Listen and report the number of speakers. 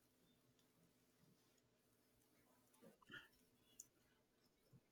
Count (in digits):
0